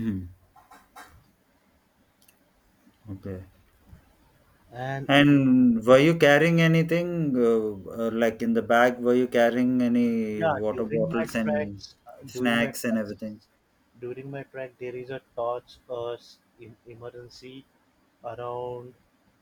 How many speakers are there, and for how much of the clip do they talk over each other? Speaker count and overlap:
two, about 11%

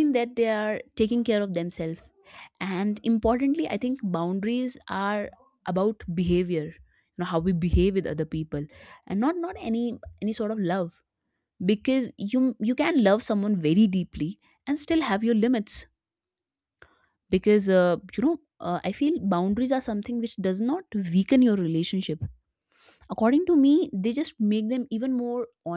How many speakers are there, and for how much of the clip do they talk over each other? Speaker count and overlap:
one, no overlap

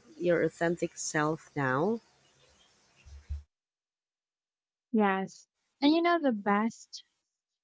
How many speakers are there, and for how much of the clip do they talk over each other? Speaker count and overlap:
two, no overlap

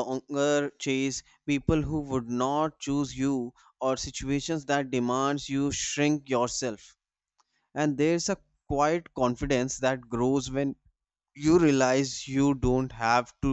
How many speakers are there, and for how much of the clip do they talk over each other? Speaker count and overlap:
one, no overlap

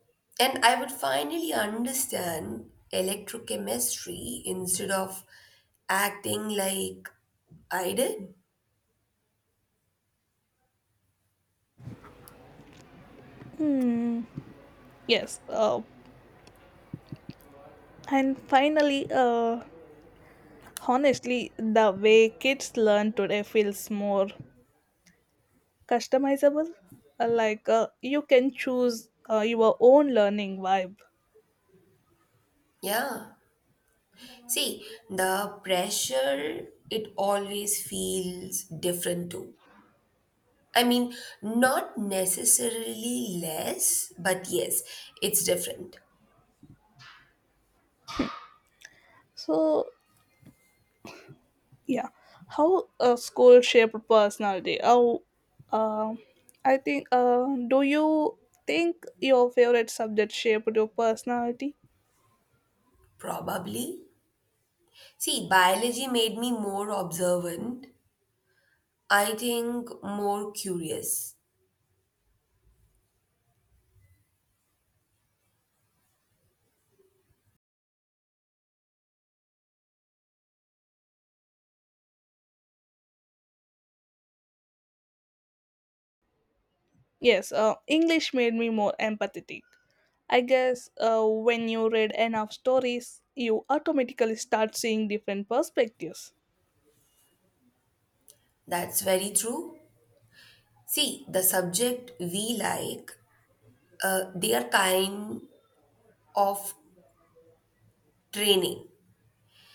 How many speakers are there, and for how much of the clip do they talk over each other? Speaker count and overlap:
two, no overlap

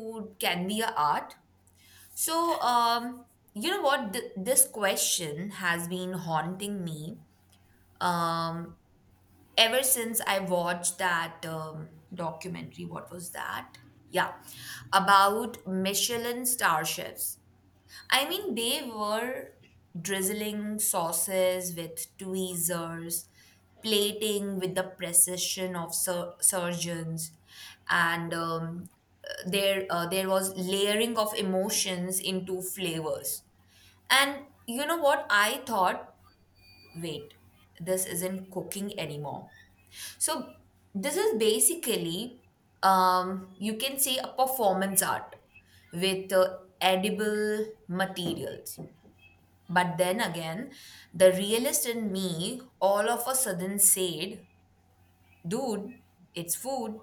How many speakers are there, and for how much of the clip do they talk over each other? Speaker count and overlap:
one, no overlap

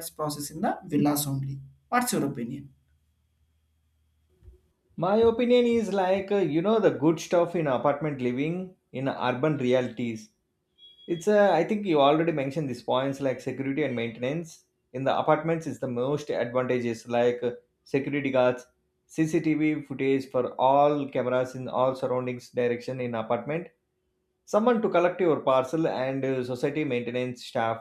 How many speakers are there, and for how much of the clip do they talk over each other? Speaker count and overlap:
two, no overlap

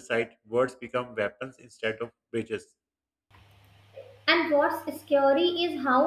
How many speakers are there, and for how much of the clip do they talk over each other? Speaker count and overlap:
two, no overlap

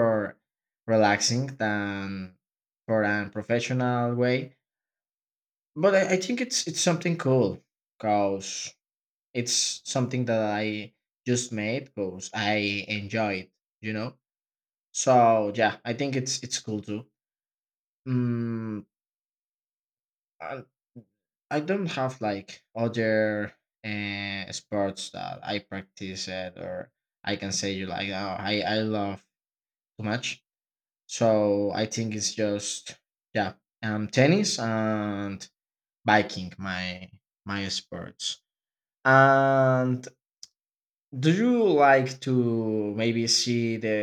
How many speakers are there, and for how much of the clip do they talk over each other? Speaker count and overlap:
one, no overlap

